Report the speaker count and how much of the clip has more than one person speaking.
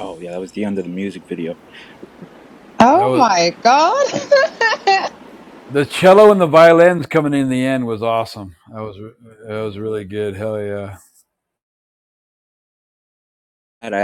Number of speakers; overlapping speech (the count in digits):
3, about 2%